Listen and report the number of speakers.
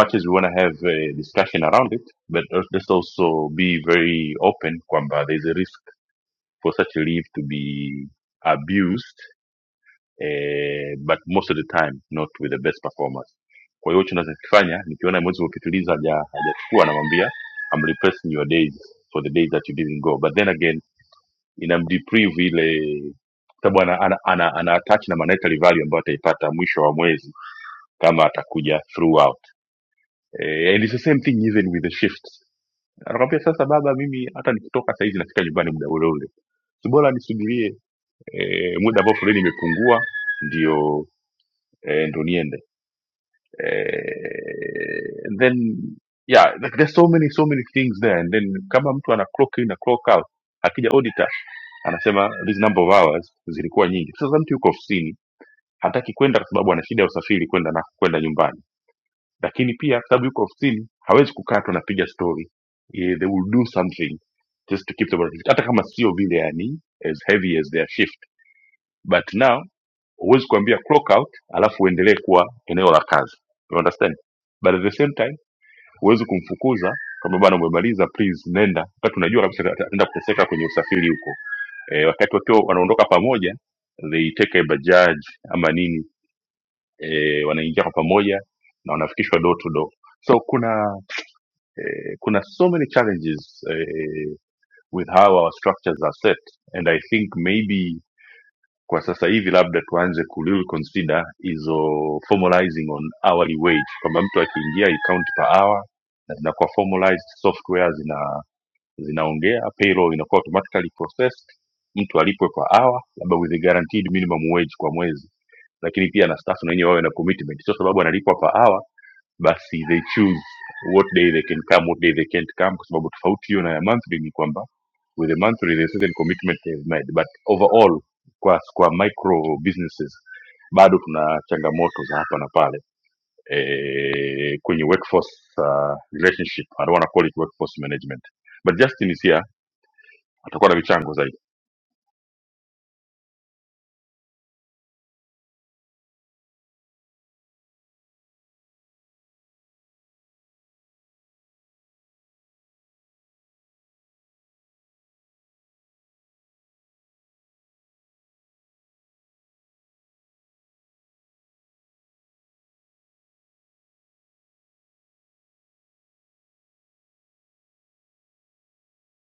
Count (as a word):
one